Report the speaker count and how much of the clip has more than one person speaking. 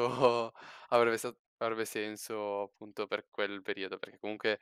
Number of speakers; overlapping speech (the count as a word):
one, no overlap